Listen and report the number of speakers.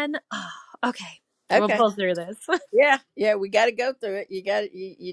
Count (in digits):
2